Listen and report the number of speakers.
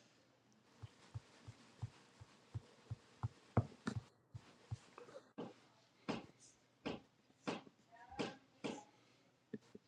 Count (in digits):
0